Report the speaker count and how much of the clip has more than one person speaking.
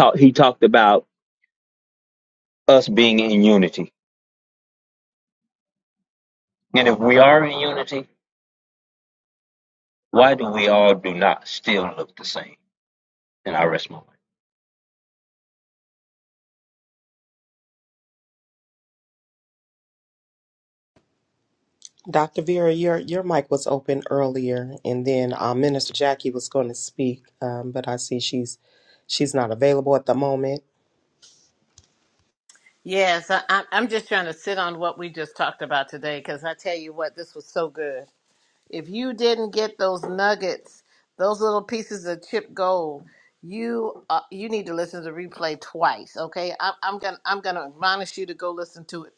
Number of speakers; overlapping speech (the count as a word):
three, no overlap